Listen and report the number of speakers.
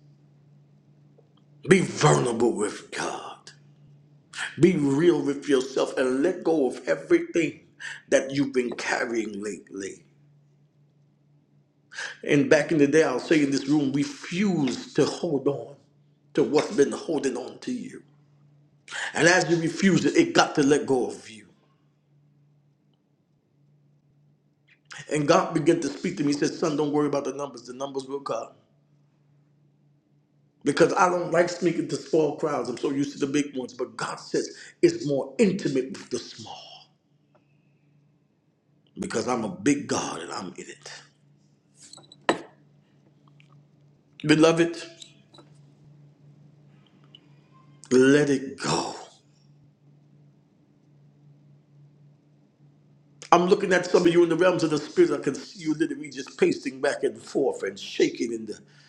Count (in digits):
1